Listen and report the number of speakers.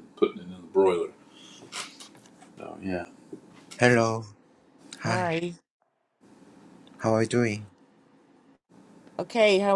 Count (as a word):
three